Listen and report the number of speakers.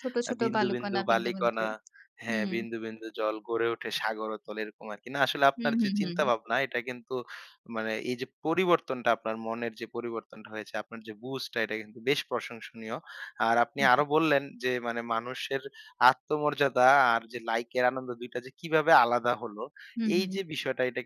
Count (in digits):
2